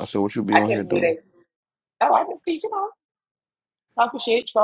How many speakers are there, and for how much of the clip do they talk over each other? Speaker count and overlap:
2, about 12%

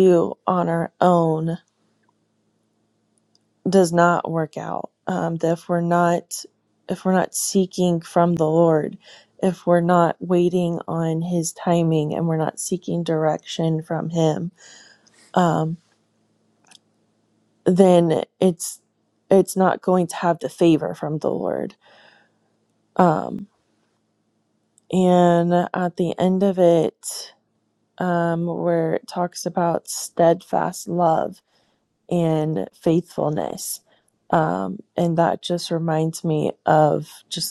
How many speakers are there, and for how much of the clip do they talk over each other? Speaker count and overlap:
1, no overlap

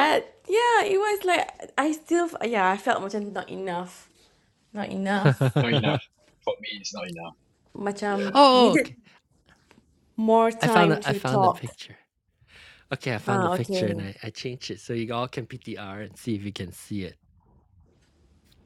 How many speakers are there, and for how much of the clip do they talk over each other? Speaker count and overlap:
3, about 15%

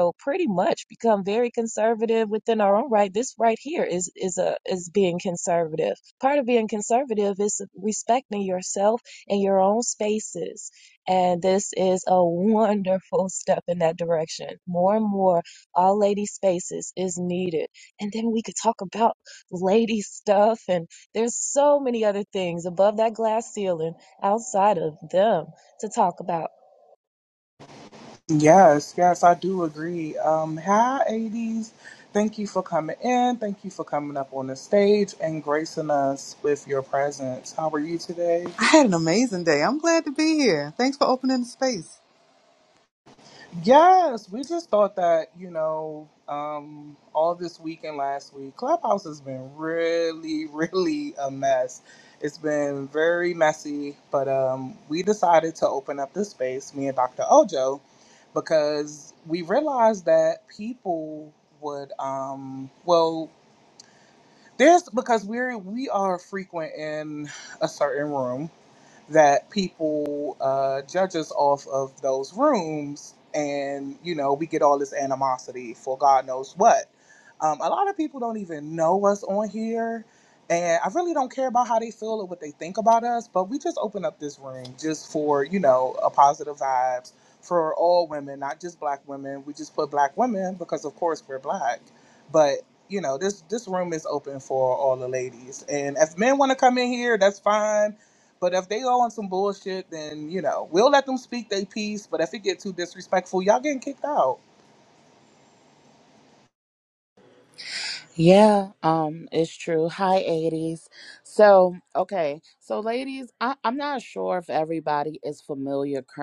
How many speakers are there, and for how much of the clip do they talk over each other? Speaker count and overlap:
4, no overlap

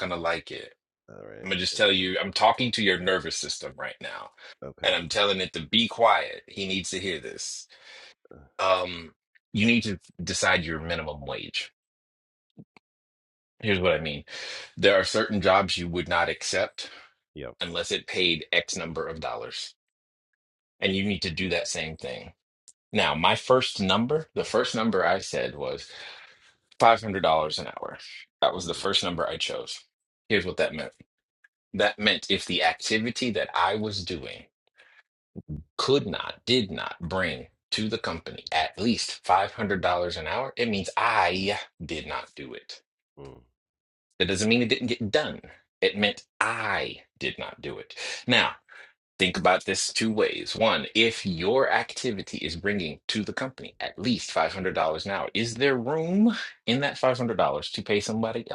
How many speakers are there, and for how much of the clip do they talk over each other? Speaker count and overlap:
2, about 1%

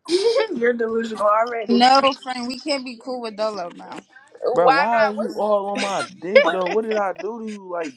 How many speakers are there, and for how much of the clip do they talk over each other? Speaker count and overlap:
3, about 19%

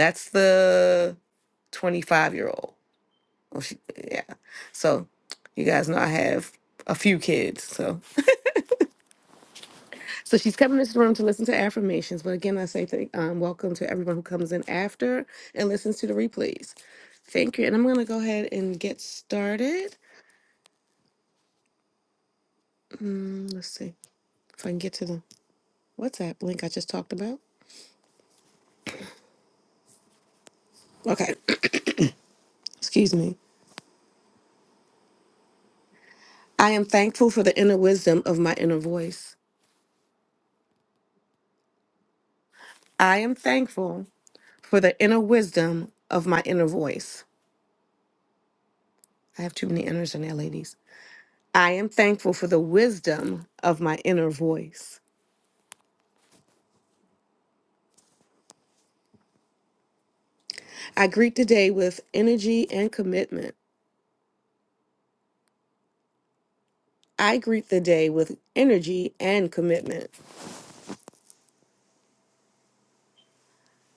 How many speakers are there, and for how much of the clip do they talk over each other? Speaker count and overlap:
1, no overlap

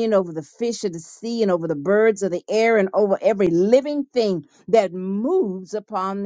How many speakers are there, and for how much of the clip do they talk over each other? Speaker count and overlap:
1, no overlap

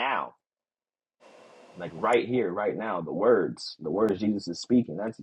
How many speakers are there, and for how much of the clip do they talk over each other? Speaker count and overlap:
1, no overlap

